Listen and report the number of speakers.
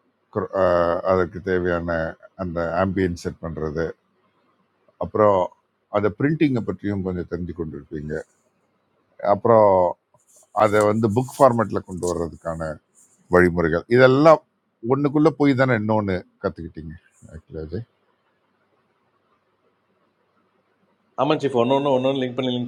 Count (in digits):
2